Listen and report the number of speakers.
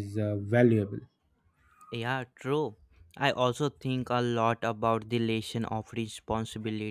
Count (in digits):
2